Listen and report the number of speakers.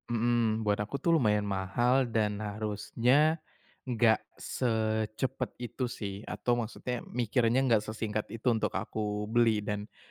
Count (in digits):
1